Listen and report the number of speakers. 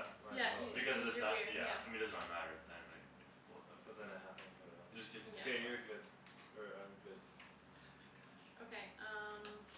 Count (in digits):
3